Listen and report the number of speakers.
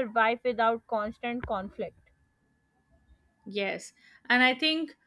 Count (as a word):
two